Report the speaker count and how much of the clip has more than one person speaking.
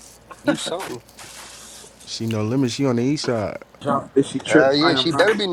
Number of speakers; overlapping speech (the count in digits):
3, about 20%